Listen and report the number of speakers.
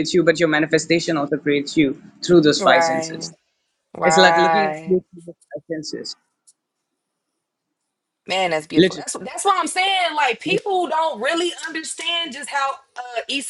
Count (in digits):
2